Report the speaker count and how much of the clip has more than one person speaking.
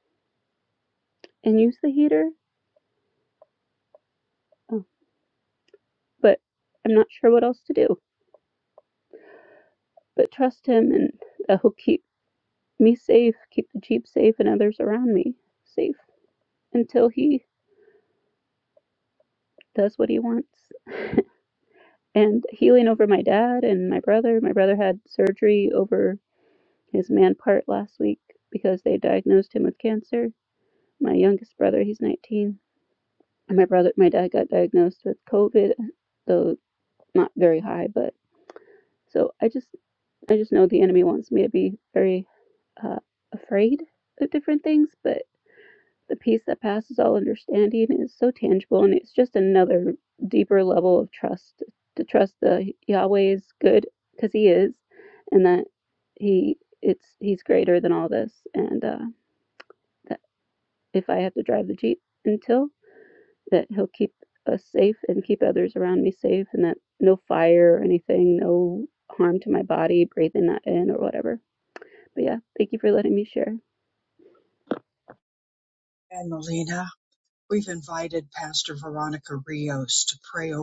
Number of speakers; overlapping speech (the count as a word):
two, no overlap